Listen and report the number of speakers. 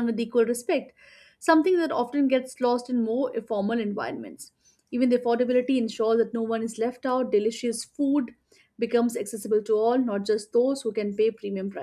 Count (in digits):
1